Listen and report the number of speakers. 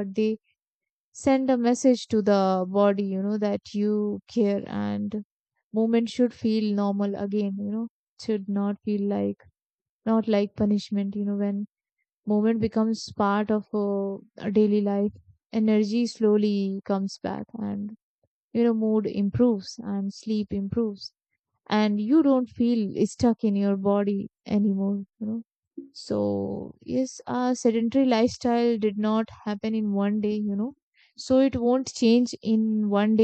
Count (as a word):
one